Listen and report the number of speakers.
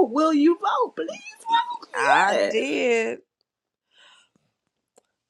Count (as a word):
two